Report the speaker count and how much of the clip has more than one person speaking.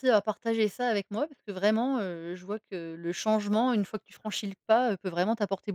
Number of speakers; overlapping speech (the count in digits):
1, no overlap